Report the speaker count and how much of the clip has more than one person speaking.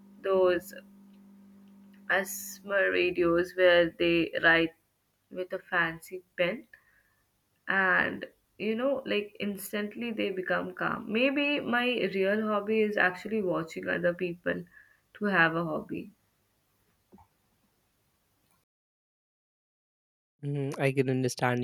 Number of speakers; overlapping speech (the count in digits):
2, no overlap